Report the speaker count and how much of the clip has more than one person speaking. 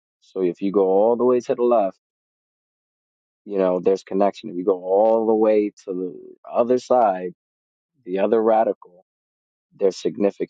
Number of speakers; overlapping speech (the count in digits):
1, no overlap